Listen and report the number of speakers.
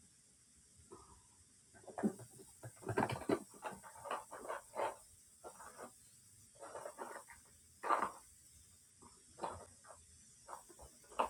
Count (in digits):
0